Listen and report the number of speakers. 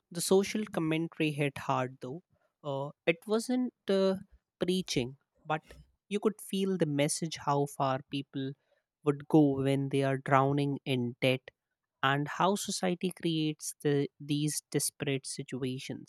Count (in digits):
1